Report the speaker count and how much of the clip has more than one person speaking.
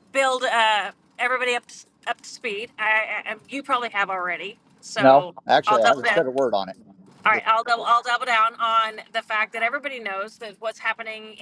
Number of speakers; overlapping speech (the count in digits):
2, about 11%